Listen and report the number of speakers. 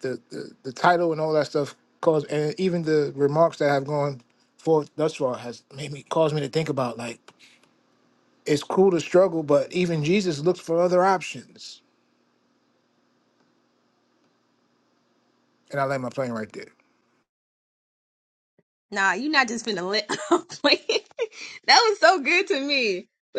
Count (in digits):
2